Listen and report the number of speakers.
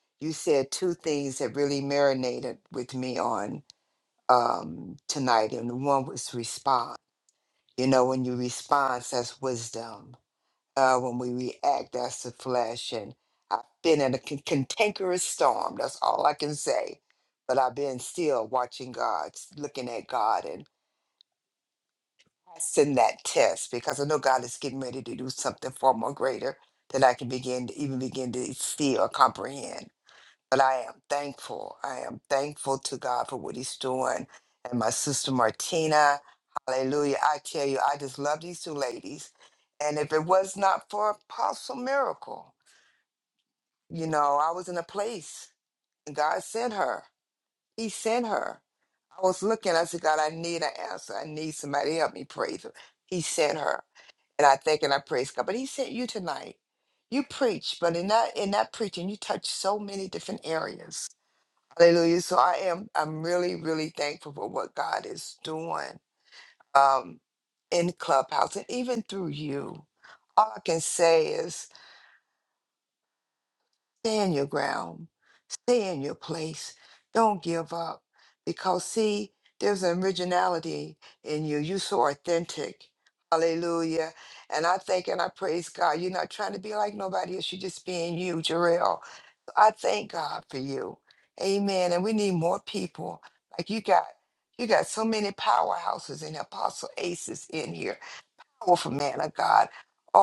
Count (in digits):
1